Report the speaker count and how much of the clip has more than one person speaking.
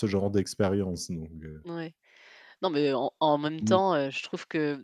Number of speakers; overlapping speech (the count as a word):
two, about 4%